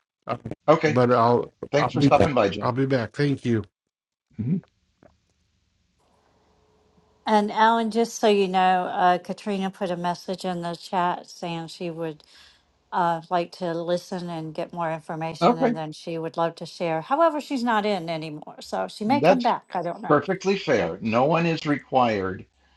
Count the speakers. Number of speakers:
3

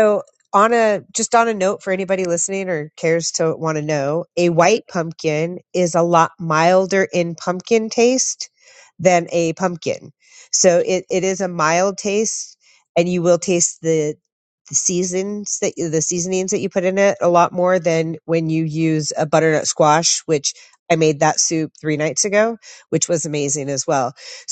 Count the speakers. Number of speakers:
1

